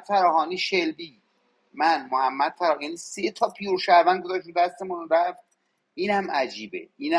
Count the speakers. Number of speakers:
one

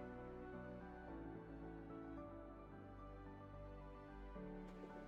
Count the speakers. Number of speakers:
zero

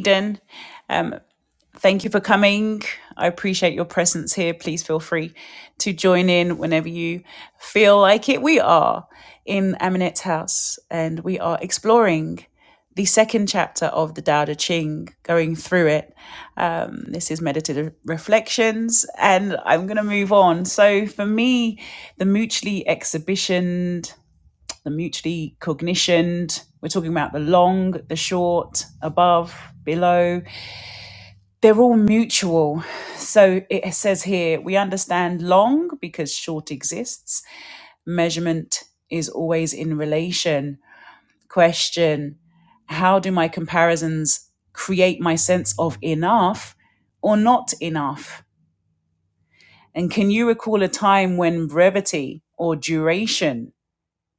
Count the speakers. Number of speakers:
one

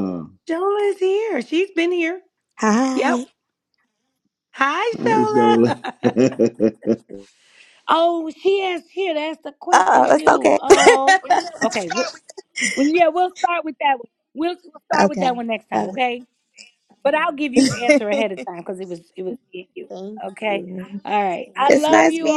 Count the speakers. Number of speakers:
three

